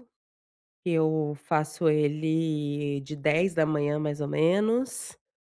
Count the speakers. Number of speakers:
one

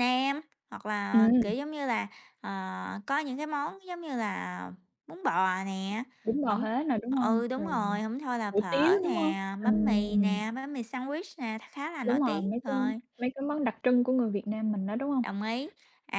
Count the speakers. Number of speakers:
two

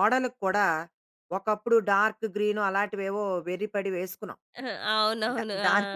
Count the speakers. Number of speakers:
two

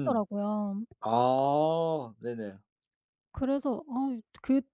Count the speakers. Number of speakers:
two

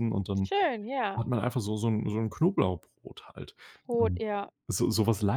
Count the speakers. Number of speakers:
two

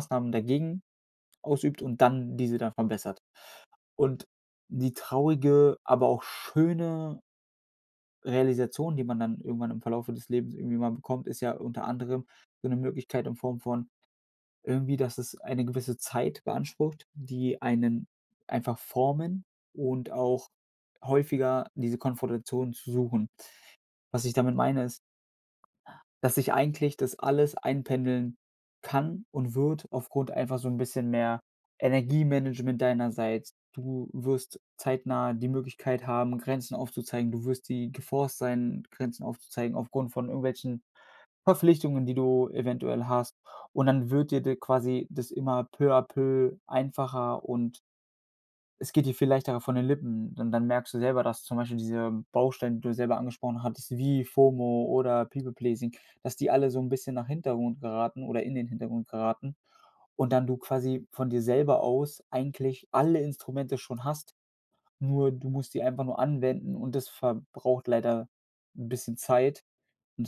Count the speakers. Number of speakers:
one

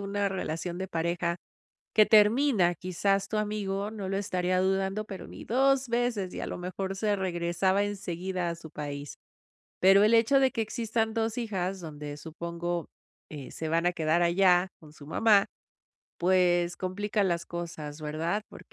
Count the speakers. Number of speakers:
one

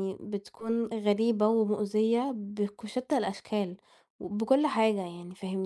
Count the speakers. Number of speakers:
one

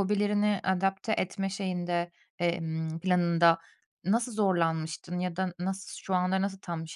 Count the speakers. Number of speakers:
one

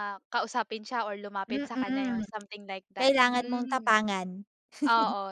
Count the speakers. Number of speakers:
two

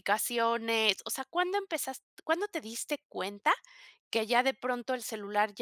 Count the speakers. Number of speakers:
one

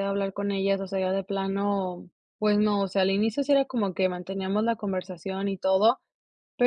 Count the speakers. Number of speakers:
one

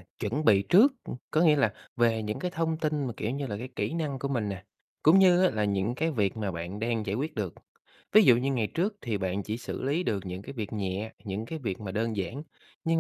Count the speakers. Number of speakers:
one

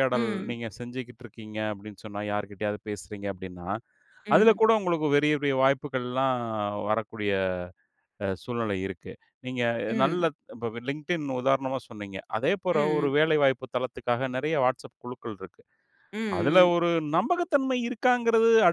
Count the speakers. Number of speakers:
two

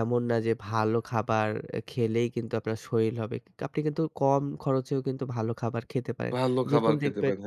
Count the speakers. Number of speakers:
two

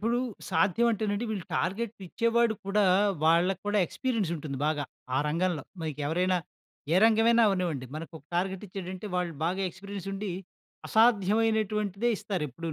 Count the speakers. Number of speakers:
one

